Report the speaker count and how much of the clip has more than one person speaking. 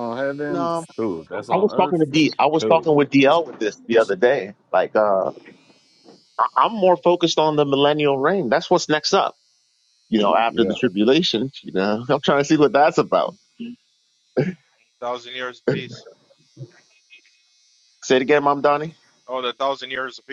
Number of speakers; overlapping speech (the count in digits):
3, about 7%